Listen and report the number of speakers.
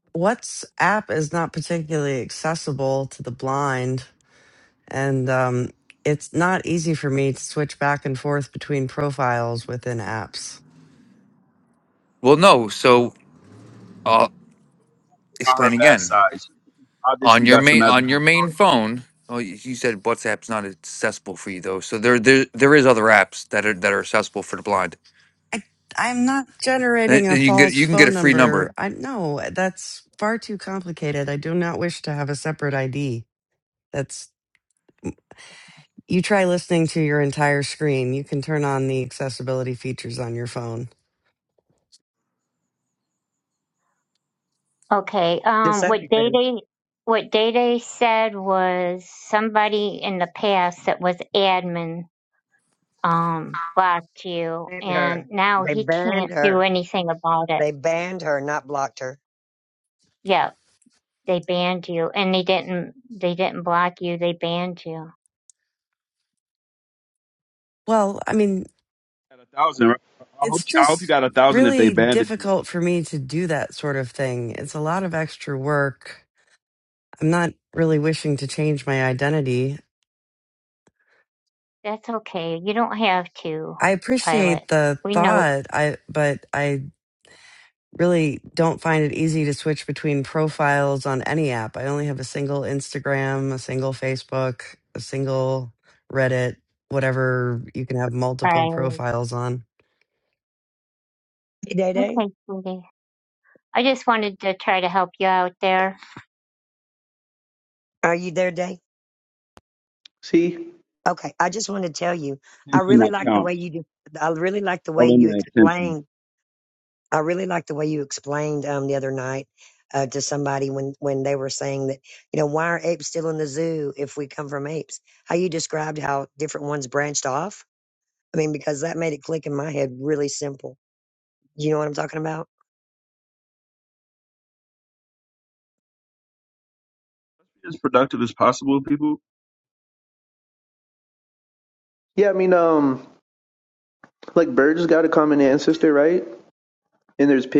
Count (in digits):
6